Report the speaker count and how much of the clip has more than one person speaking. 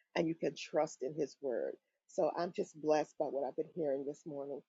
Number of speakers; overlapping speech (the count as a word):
one, no overlap